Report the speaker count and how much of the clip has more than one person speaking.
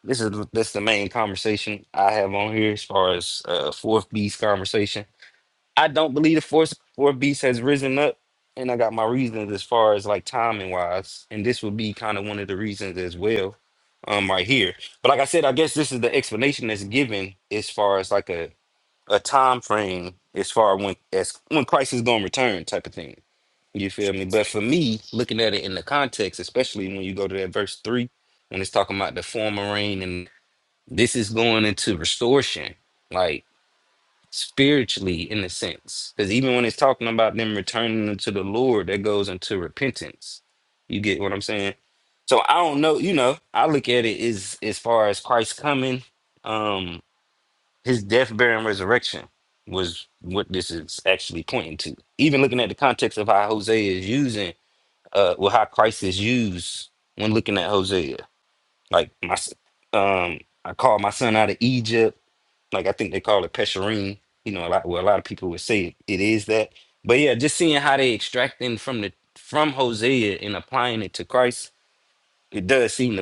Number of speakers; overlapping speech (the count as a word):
one, no overlap